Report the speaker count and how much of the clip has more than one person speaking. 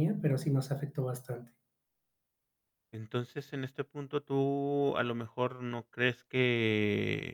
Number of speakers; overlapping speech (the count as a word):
two, no overlap